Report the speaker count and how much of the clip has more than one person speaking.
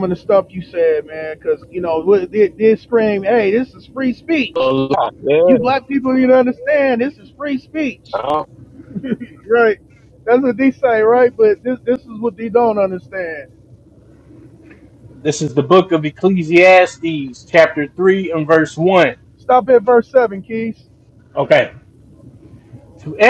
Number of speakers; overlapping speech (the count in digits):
3, about 2%